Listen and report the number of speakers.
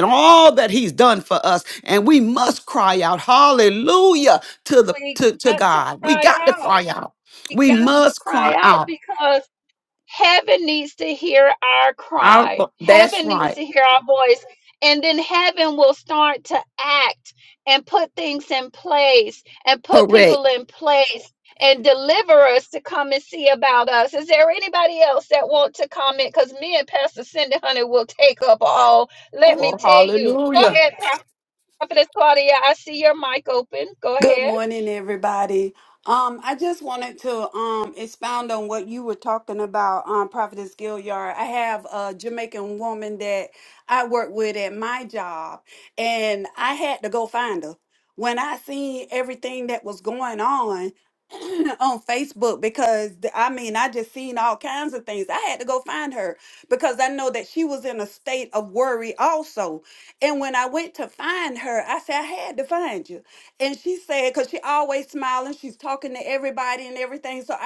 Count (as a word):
three